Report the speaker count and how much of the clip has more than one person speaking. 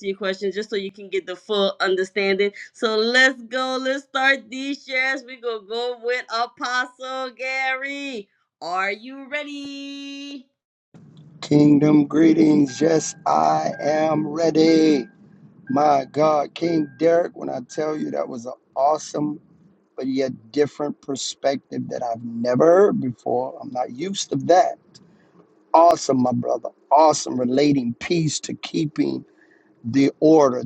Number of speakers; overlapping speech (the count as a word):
two, no overlap